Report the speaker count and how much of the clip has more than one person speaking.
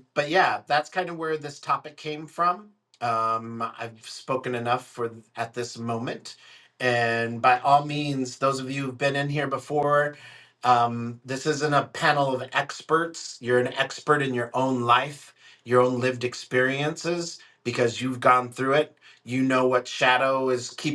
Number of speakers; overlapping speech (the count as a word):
one, no overlap